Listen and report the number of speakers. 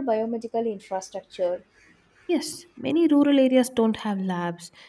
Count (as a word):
two